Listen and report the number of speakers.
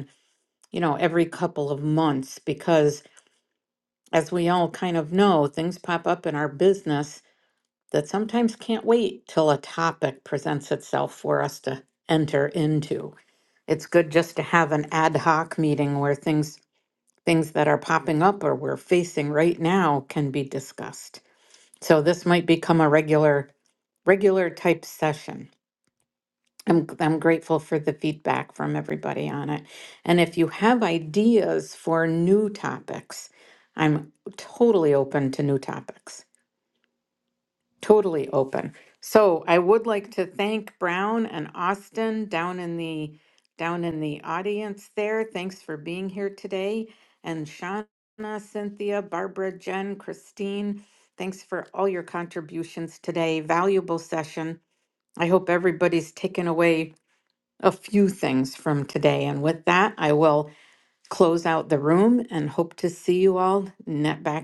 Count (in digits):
1